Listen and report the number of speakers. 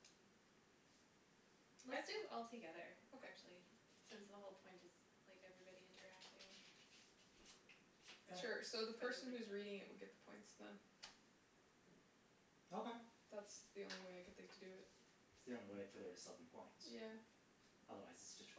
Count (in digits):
3